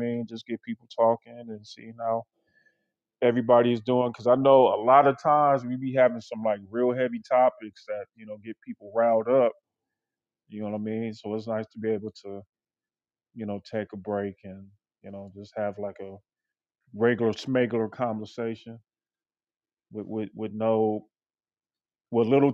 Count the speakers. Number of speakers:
one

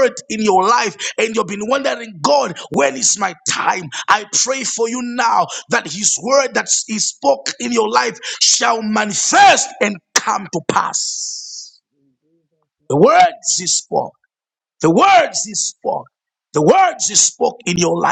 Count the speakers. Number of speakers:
one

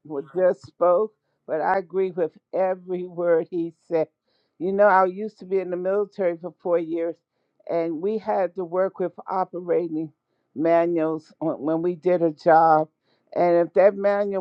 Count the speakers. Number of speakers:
one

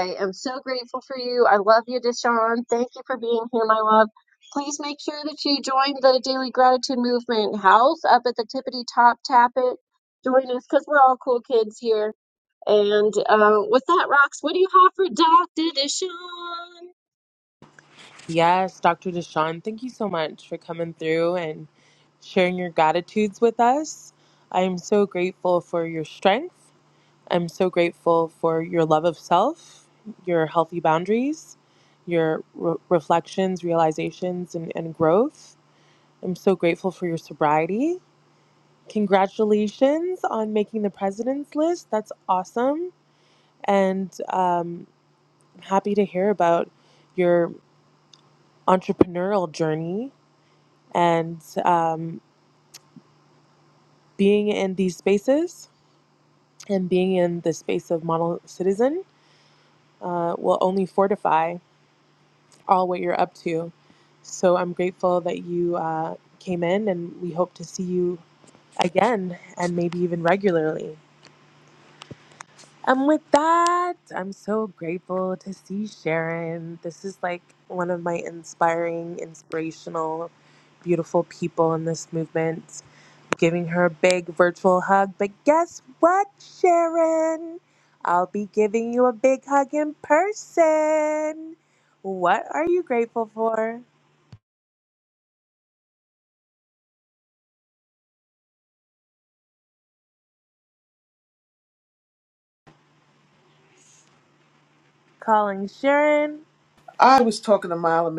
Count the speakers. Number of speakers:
three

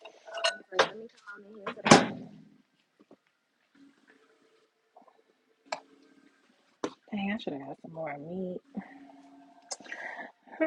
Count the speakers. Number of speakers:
two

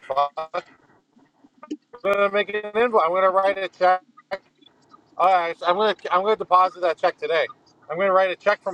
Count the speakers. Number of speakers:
one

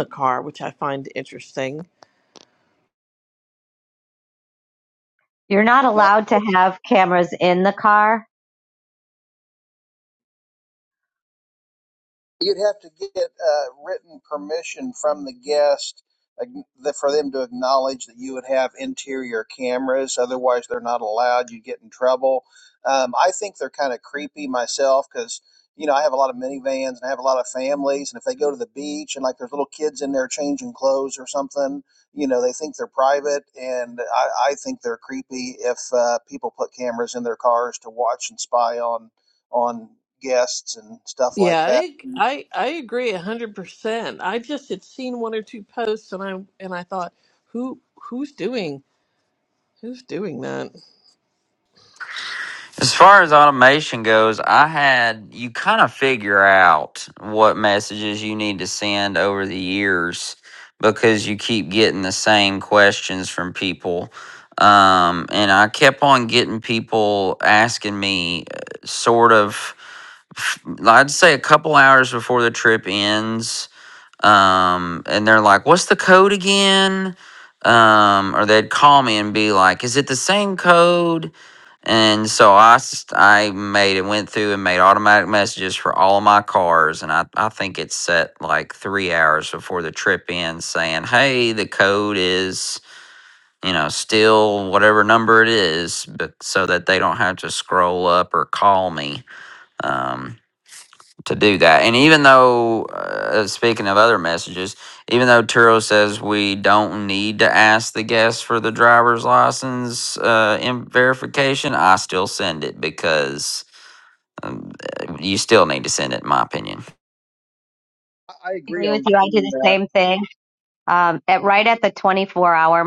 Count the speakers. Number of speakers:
four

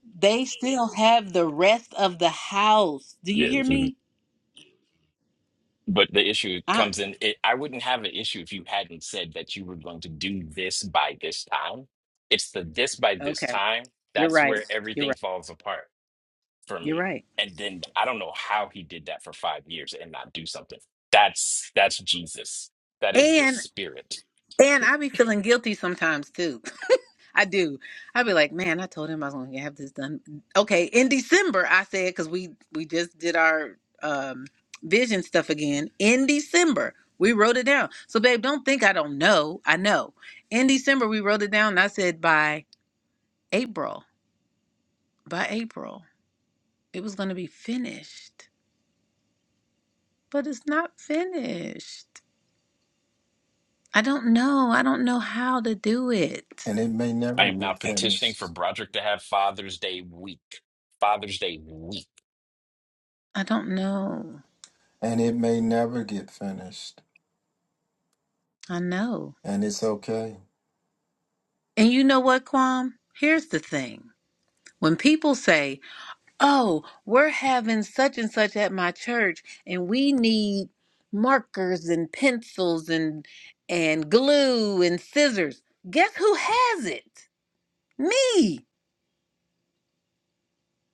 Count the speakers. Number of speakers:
three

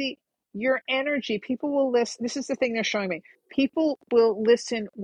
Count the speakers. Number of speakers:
one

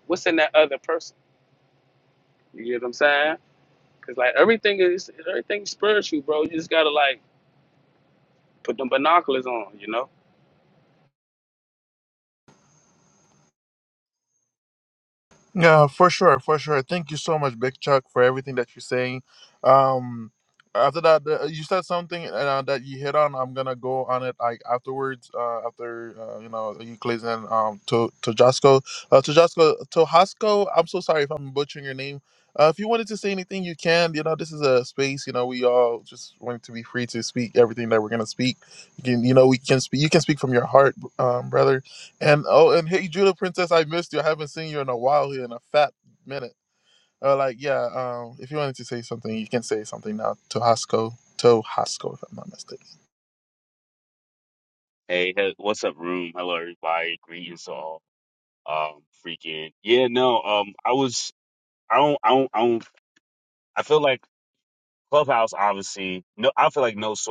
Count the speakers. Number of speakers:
three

